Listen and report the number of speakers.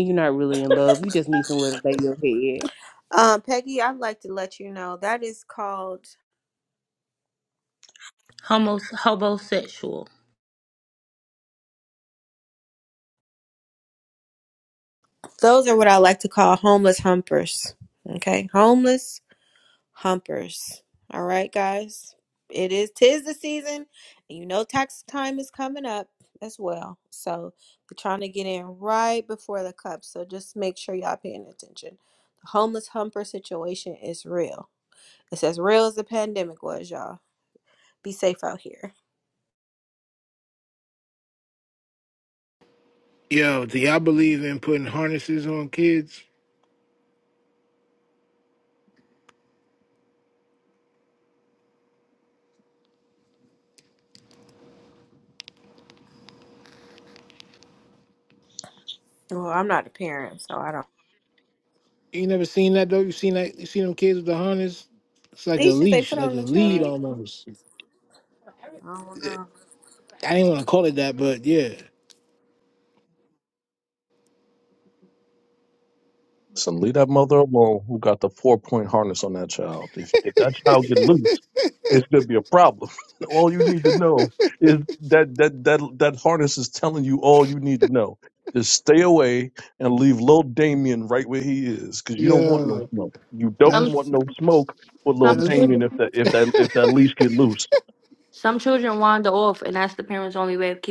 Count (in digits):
6